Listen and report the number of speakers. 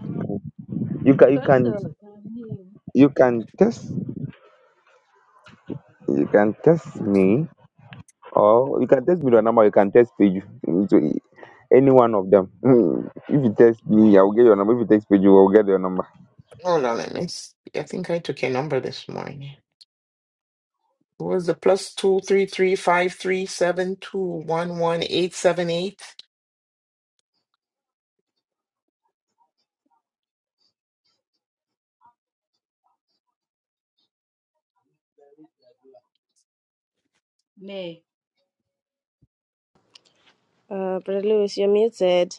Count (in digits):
4